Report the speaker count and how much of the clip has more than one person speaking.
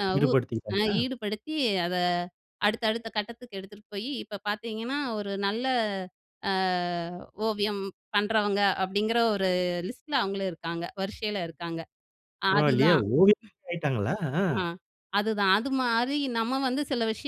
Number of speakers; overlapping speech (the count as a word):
two, about 6%